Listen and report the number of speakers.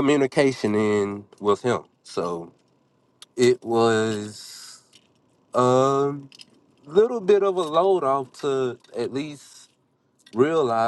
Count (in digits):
1